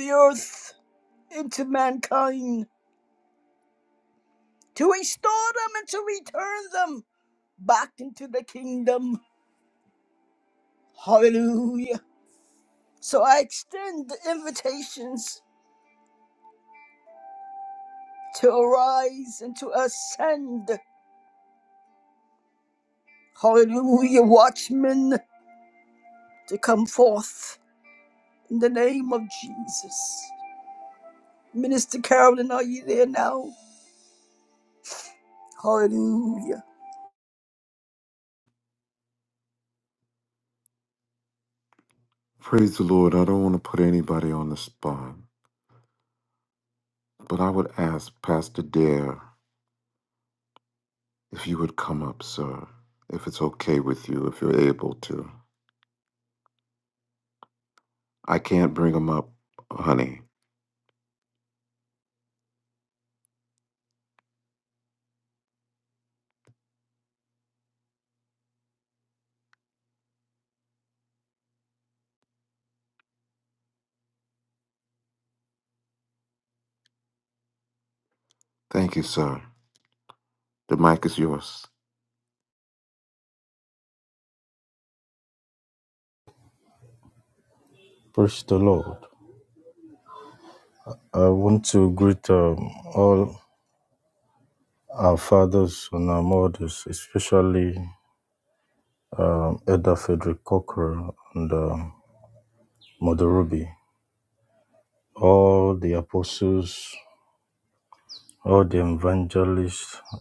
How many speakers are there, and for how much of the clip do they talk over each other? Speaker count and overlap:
3, no overlap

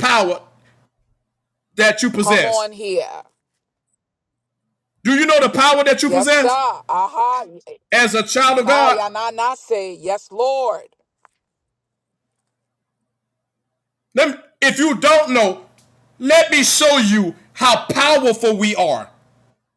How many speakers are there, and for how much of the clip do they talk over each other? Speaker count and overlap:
2, about 6%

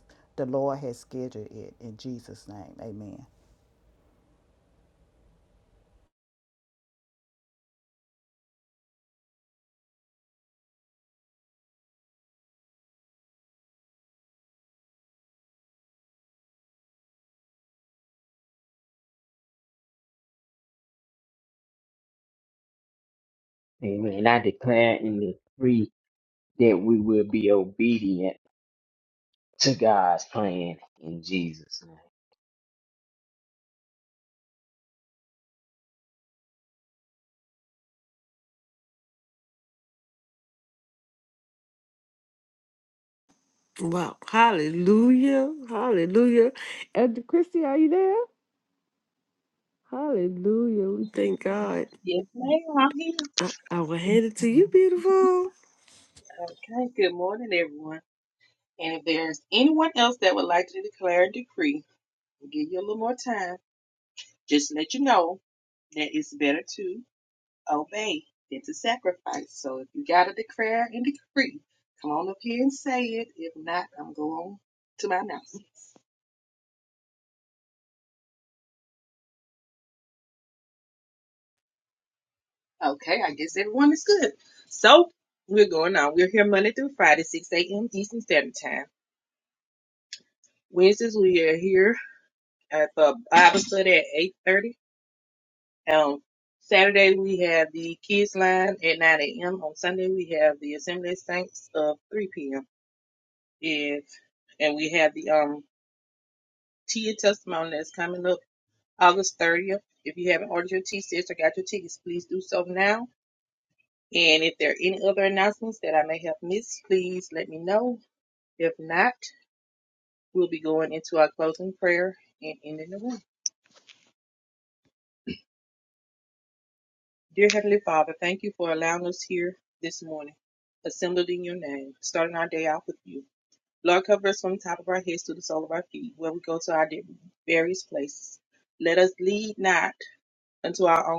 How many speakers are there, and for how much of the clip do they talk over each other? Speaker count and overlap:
4, no overlap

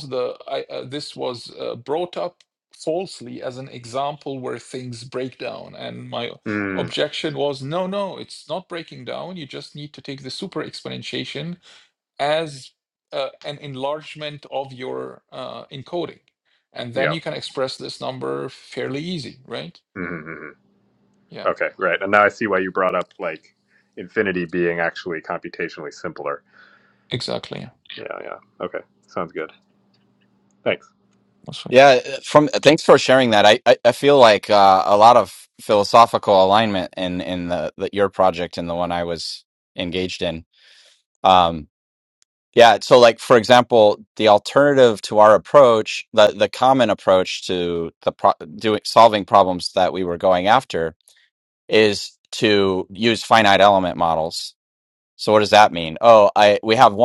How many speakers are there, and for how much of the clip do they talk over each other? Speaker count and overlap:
3, about 1%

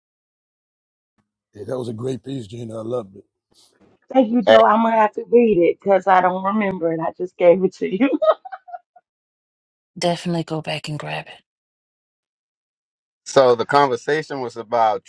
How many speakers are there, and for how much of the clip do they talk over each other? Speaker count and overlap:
4, about 1%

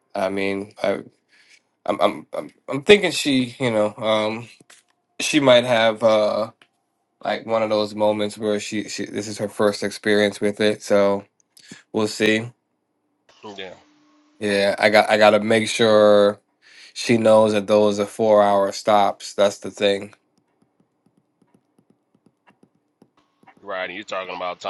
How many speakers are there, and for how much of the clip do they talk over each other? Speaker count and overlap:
2, no overlap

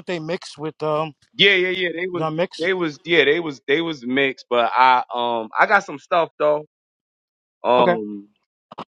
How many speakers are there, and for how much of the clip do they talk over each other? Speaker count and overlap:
2, about 5%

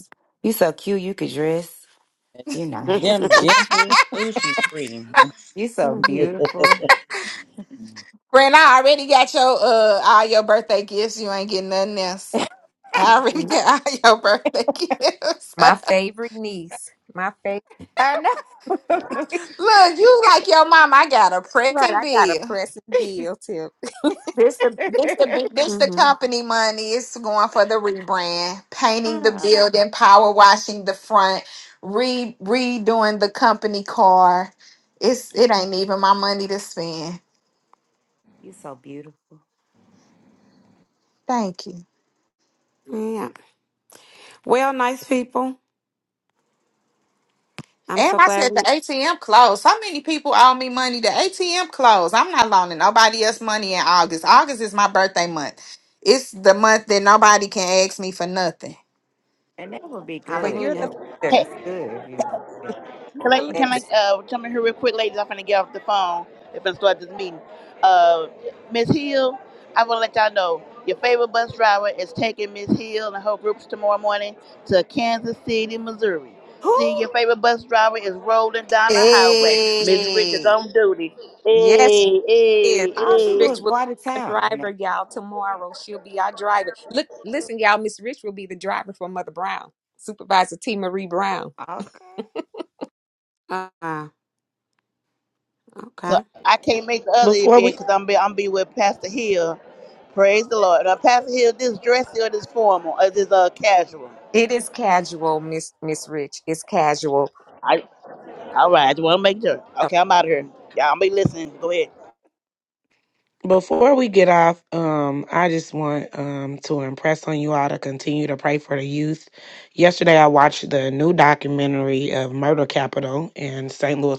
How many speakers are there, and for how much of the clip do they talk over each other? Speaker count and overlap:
7, about 7%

